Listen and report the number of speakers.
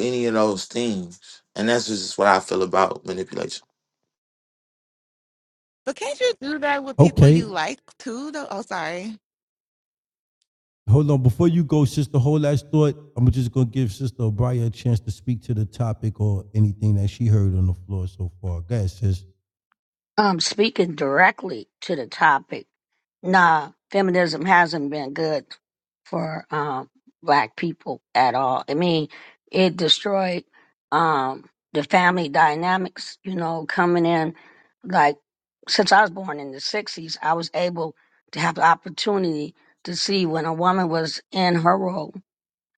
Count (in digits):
4